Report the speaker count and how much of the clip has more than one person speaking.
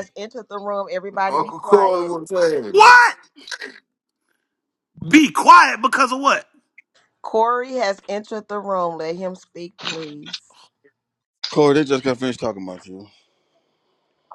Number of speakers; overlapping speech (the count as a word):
four, about 7%